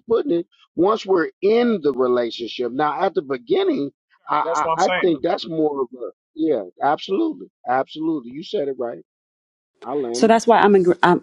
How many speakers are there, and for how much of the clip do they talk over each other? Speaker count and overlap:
2, about 3%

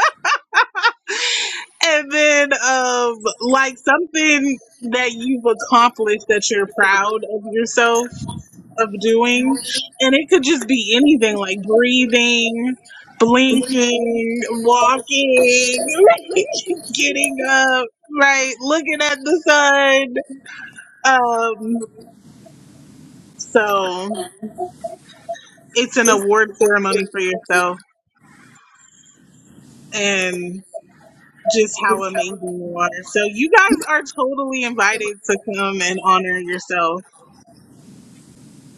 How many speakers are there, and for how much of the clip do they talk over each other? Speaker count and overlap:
1, no overlap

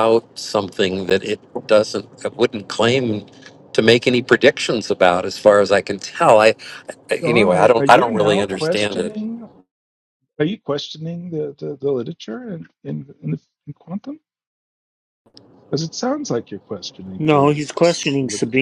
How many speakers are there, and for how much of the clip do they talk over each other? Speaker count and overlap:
3, about 15%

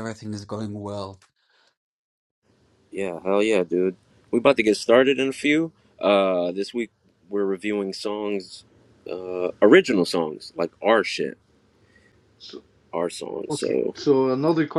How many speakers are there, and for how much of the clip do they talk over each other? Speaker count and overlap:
3, about 3%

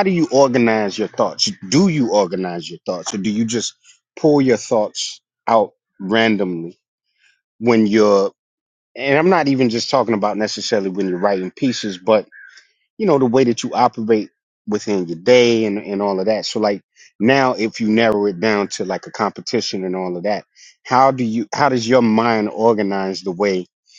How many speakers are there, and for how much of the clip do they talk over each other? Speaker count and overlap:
1, no overlap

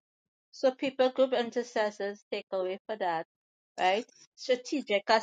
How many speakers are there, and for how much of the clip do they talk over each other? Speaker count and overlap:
1, no overlap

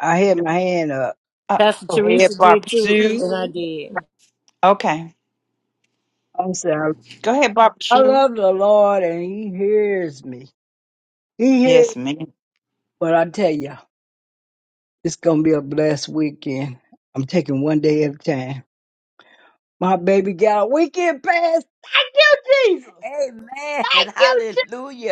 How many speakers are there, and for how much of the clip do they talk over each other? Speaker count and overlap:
4, about 12%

